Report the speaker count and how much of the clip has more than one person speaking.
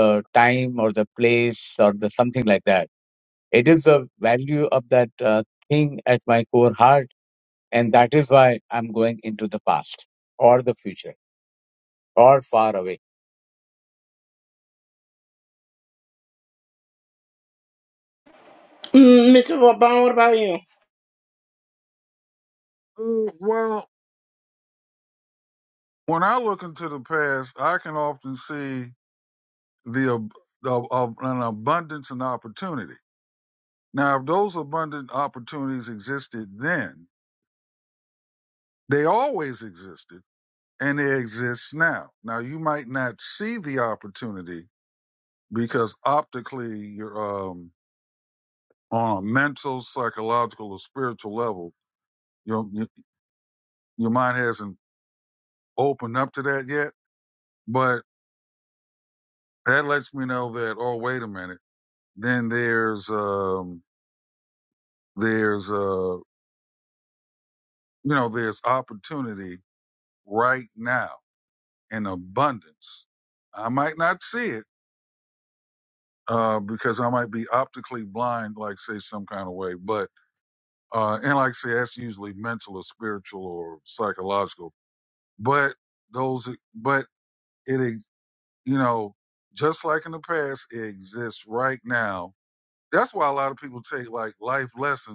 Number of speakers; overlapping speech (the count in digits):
3, no overlap